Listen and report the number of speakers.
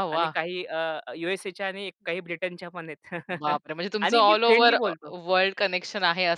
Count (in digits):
2